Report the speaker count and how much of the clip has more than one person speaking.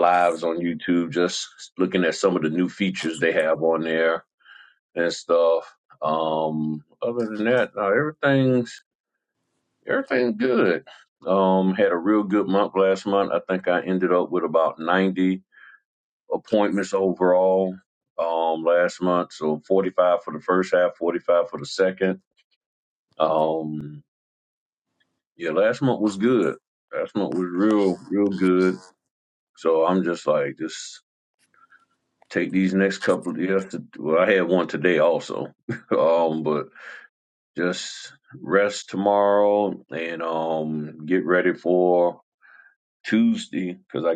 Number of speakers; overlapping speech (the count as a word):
one, no overlap